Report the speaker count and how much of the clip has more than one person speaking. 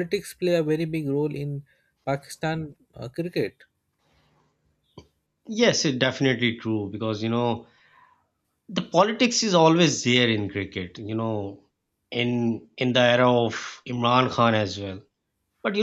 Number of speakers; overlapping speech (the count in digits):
2, no overlap